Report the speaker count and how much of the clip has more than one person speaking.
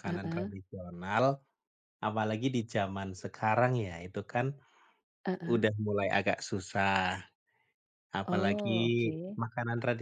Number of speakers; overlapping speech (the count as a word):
two, about 10%